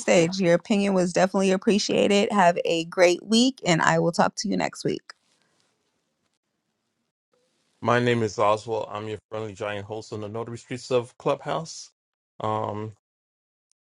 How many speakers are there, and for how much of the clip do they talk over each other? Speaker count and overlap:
2, no overlap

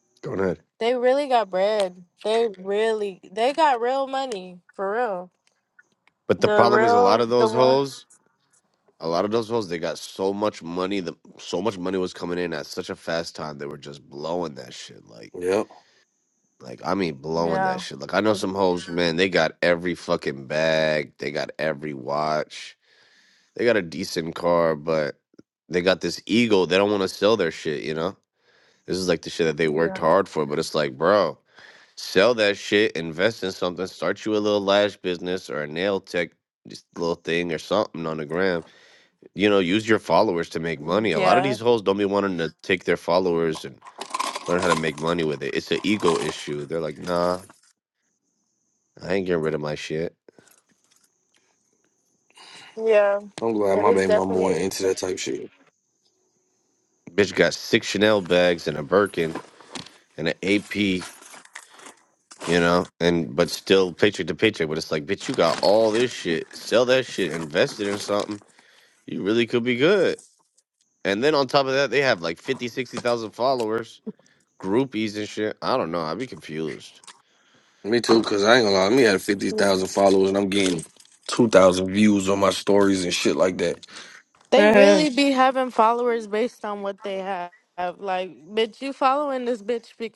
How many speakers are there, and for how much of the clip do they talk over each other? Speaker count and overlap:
3, about 5%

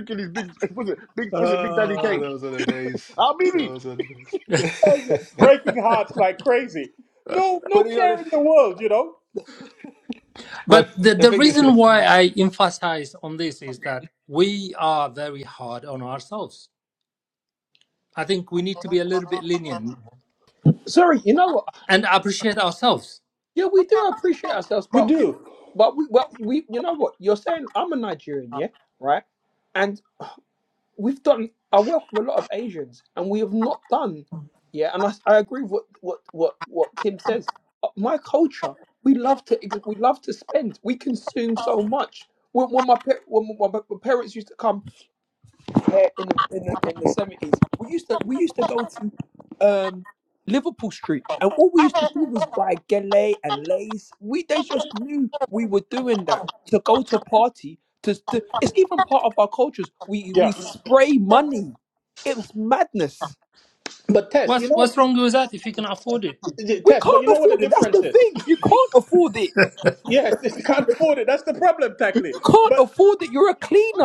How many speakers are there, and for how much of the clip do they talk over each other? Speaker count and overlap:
5, about 8%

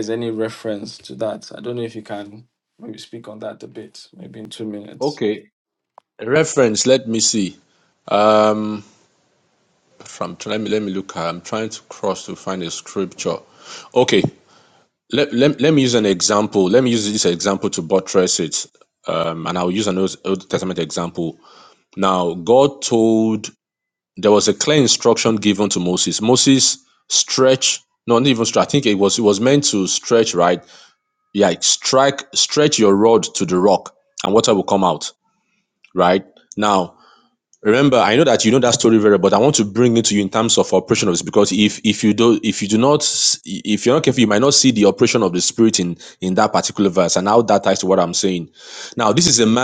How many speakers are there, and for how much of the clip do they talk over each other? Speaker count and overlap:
2, no overlap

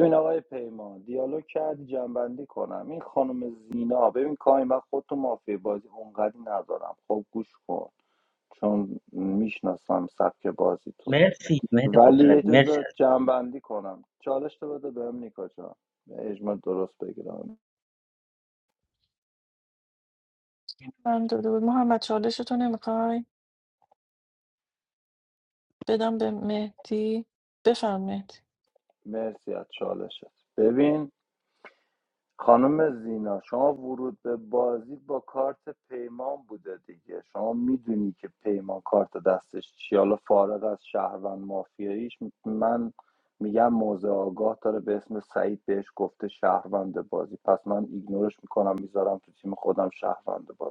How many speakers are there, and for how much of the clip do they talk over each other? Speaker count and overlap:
3, about 2%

